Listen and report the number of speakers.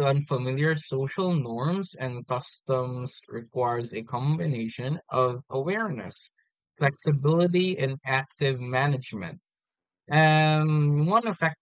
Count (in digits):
1